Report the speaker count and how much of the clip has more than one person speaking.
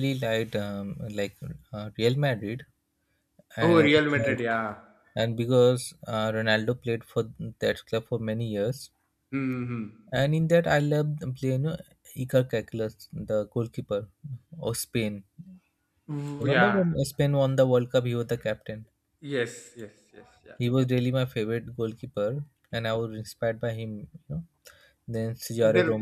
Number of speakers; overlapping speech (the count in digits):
2, about 6%